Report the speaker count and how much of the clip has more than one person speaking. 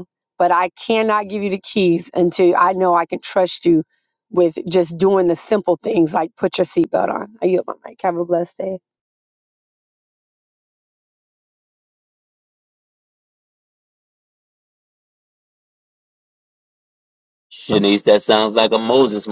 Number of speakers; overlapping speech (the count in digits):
2, no overlap